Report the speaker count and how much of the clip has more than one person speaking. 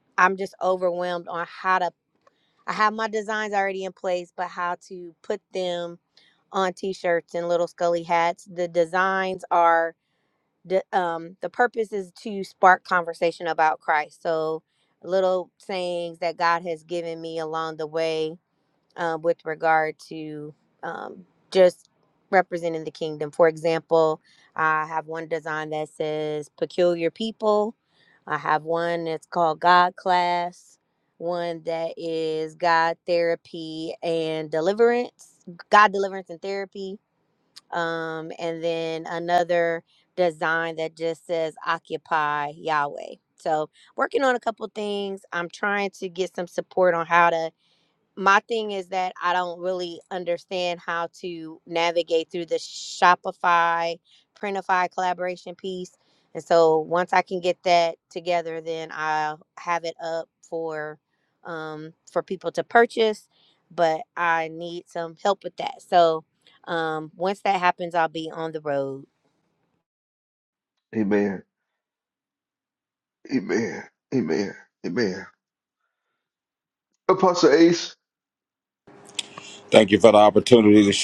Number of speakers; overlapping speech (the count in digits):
3, no overlap